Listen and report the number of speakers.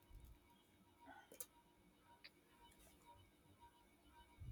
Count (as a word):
zero